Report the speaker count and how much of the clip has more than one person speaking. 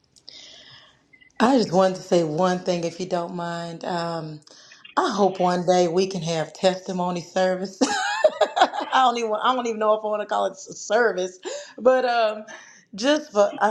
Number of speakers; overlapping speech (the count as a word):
one, no overlap